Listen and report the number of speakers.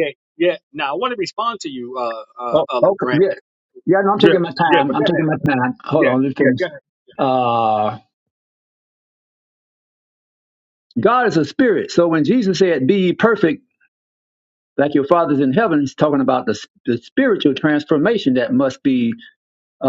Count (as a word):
two